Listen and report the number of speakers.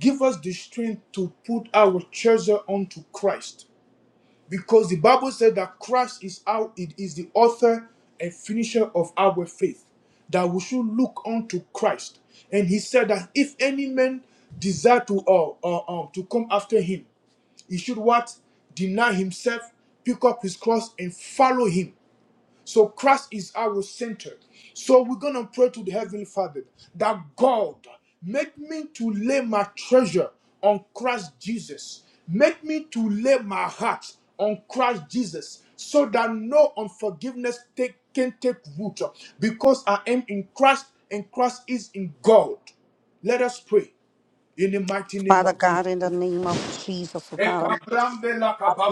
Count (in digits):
2